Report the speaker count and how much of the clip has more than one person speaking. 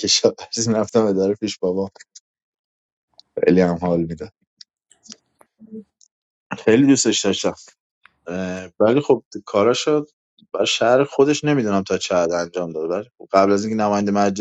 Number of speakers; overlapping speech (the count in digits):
1, no overlap